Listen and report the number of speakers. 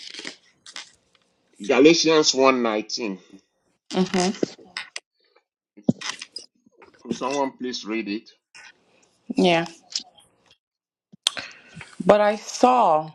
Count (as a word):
two